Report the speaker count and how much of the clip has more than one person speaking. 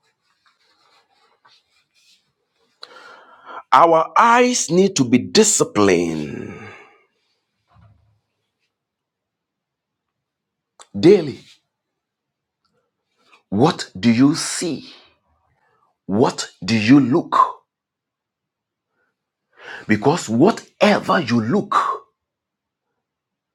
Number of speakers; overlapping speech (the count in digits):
1, no overlap